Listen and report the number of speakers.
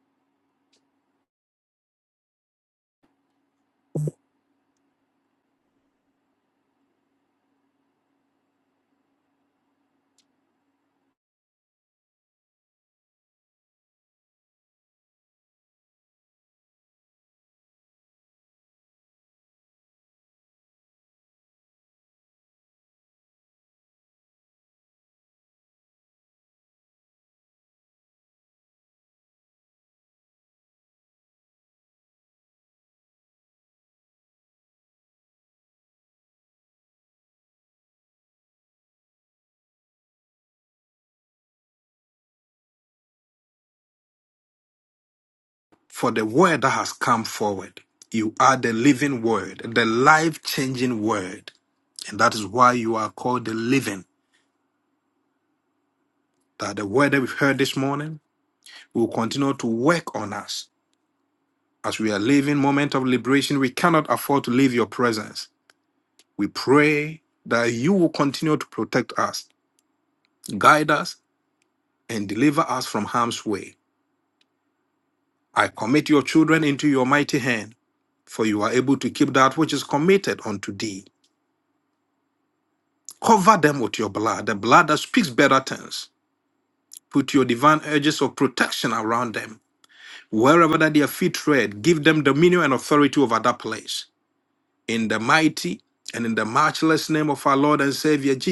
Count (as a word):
one